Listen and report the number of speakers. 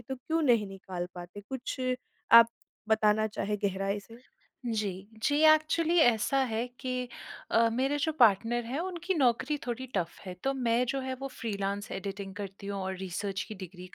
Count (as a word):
two